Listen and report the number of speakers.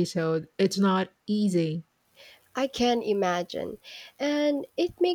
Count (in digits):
2